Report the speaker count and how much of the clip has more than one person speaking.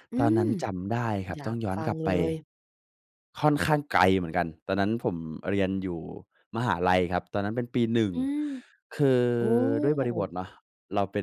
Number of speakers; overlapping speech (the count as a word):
two, about 11%